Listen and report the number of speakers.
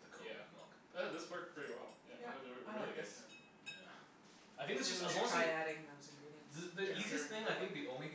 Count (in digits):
3